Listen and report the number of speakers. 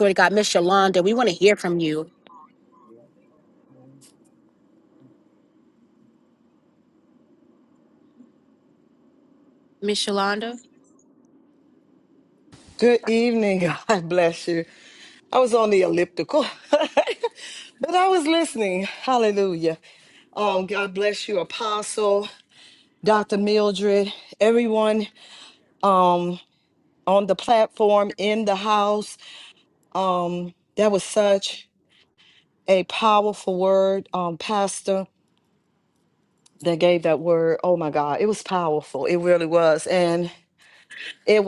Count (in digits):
2